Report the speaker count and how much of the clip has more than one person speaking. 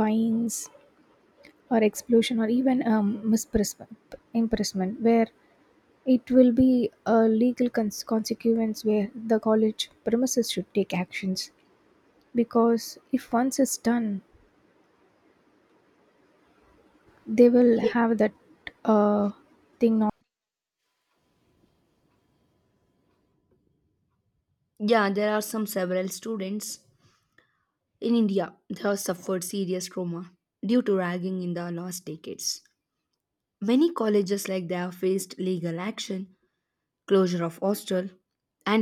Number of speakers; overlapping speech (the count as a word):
two, about 1%